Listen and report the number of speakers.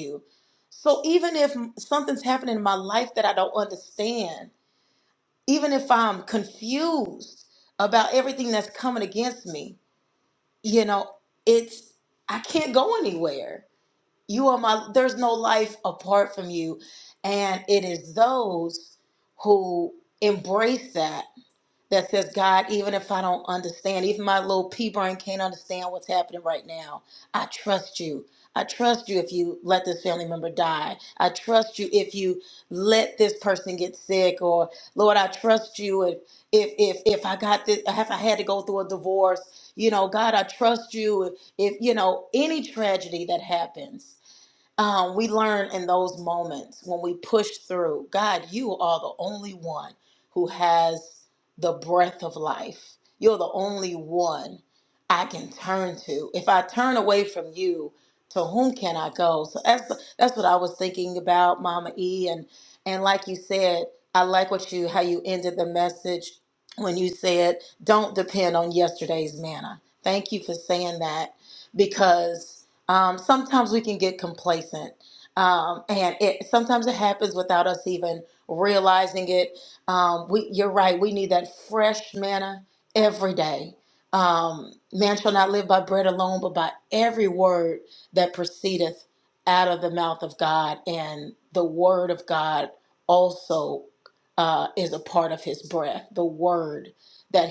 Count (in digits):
1